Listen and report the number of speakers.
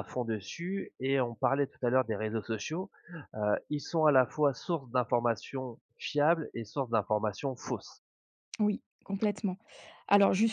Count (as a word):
two